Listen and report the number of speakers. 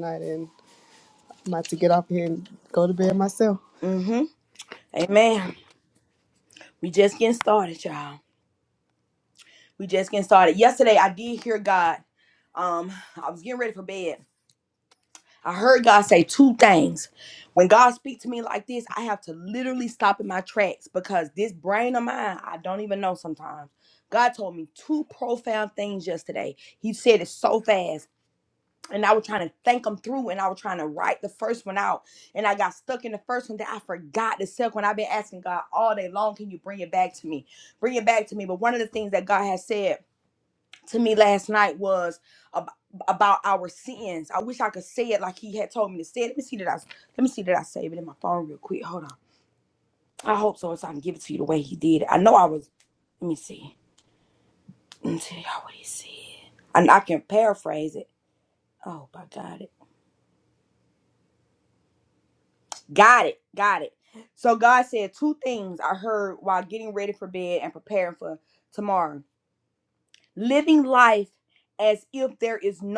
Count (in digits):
2